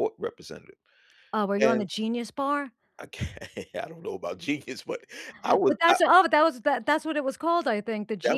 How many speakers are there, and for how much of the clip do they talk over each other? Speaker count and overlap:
2, about 9%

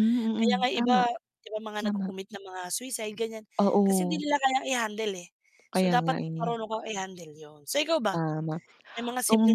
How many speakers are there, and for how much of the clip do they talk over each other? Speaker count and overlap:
2, about 25%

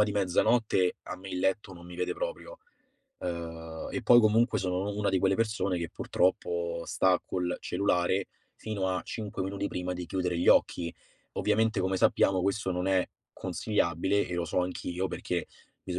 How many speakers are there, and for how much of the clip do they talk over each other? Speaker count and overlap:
1, no overlap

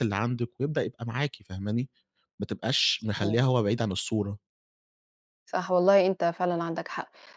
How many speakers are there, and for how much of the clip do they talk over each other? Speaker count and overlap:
2, about 4%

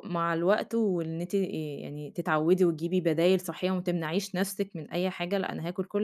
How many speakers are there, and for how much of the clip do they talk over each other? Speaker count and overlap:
1, no overlap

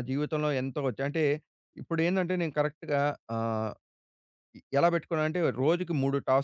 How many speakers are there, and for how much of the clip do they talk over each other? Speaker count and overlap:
1, no overlap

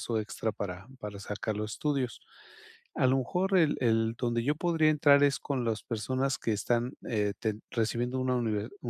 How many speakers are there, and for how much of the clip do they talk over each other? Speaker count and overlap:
1, no overlap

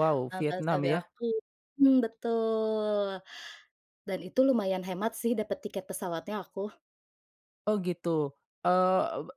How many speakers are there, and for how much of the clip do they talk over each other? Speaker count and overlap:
2, about 8%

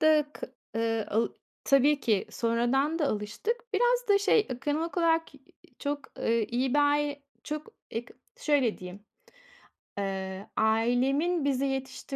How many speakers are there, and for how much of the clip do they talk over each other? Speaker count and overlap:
1, no overlap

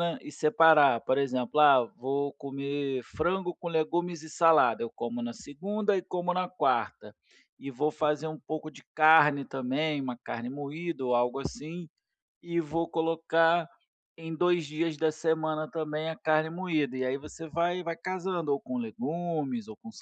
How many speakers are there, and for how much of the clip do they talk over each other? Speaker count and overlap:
1, no overlap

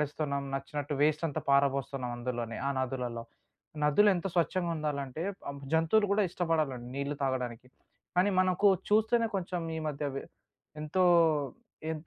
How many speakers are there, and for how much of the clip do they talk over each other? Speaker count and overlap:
1, no overlap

